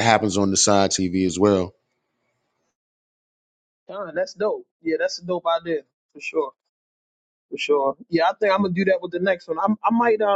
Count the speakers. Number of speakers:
two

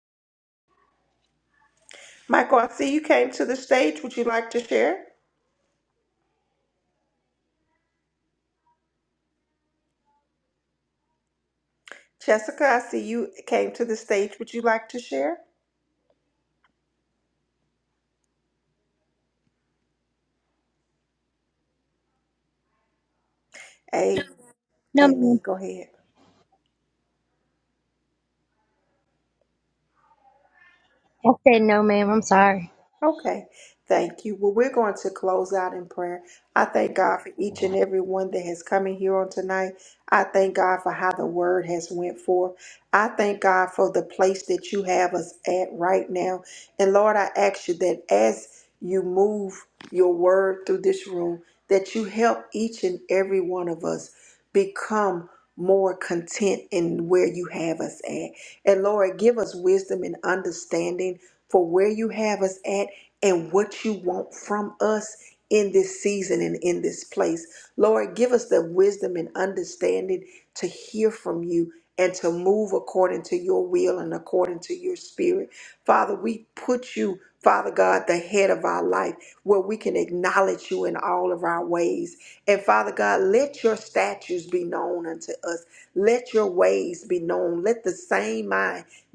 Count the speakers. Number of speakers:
two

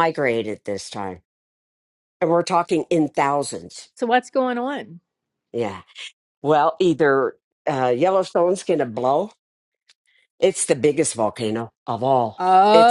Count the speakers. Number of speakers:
two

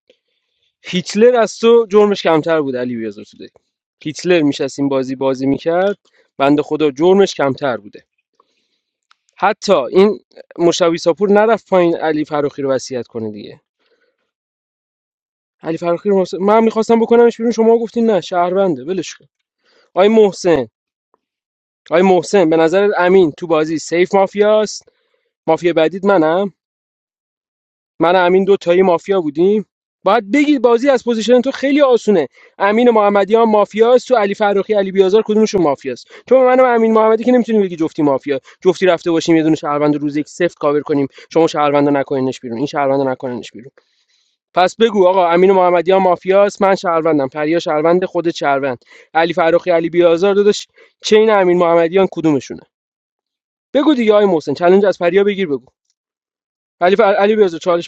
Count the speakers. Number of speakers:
one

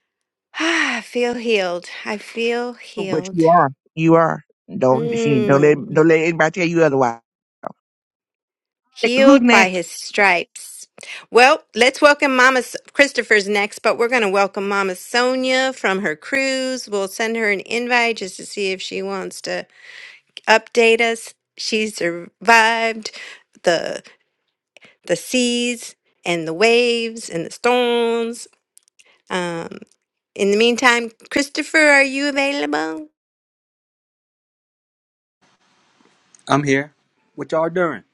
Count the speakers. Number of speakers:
three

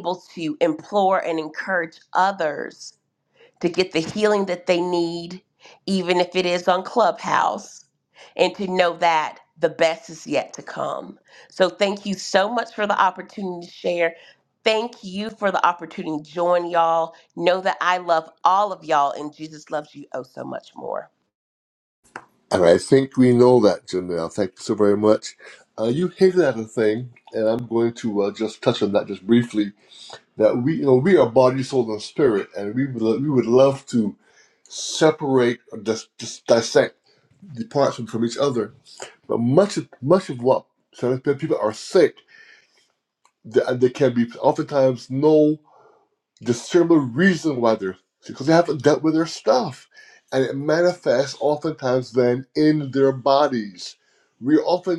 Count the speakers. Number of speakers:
two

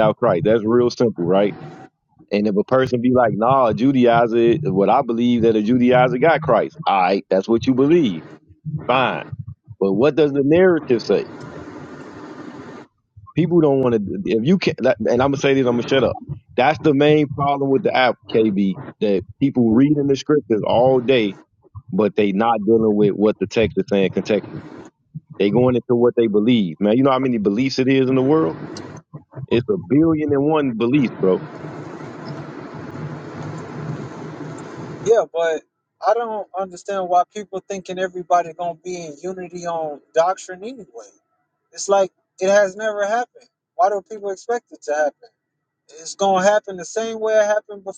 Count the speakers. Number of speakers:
two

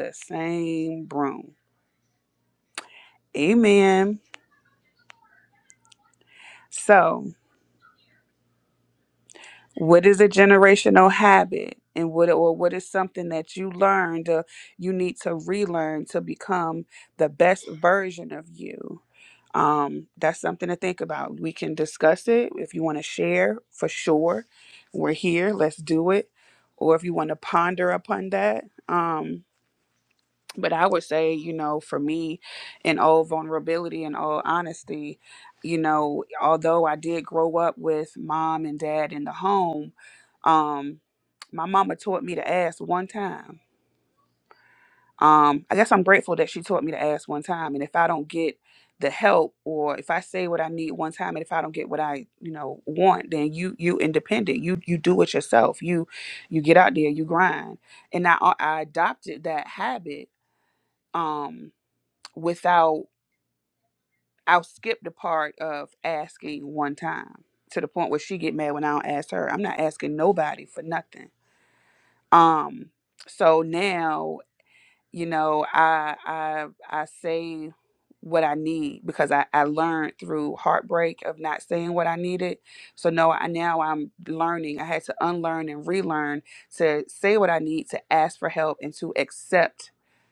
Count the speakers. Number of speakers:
one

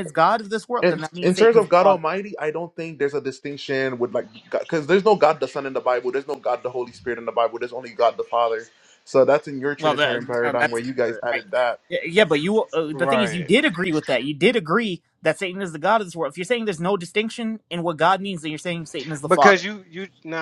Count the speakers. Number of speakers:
three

